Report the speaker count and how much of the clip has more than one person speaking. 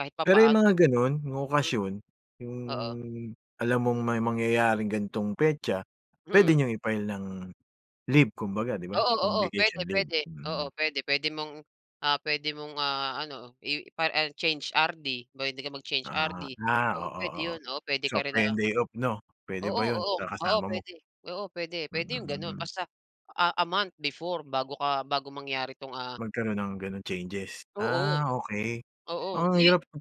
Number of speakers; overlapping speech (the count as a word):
two, about 21%